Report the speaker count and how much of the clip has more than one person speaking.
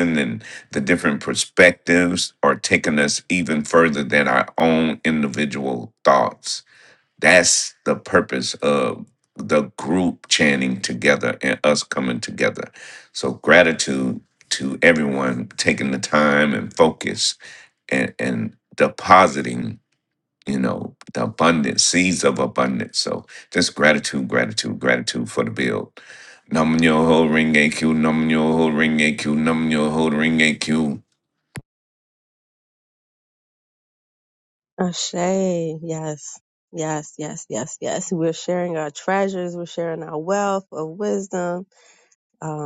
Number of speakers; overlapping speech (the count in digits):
2, no overlap